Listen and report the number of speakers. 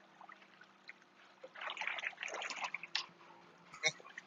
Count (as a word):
zero